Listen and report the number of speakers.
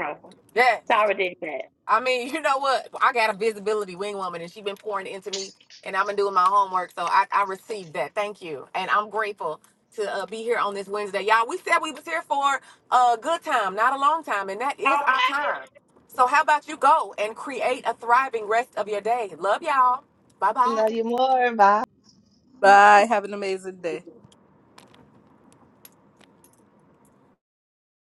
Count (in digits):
4